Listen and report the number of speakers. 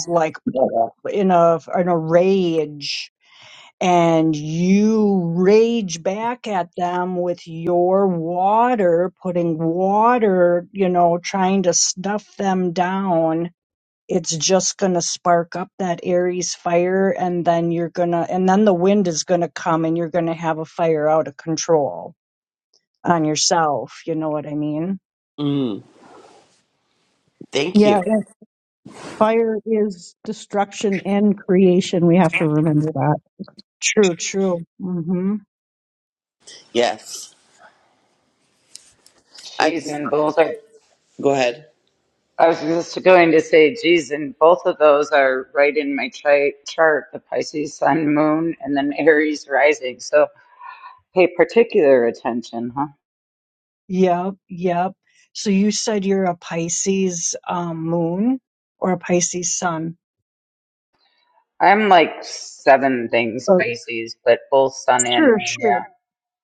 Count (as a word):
four